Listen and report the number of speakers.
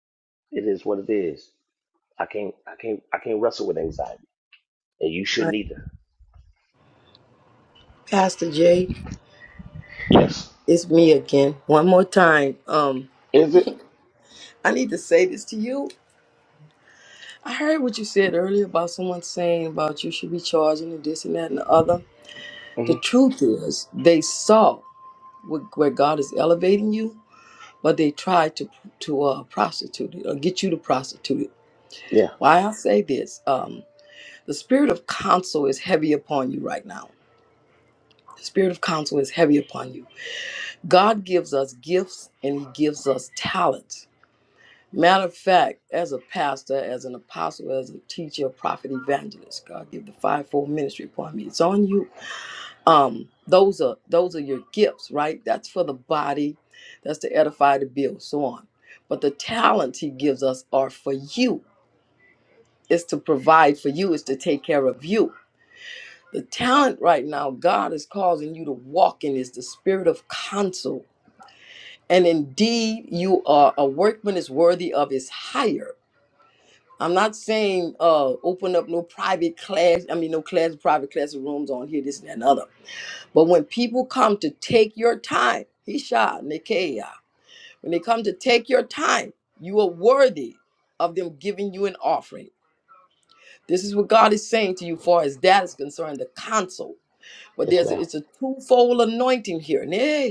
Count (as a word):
two